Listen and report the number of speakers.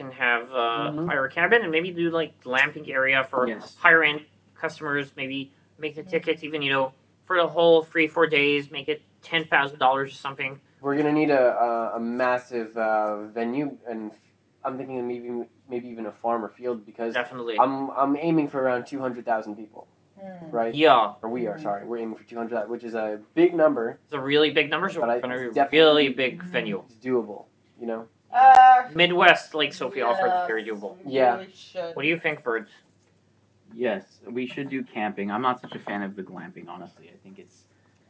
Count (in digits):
4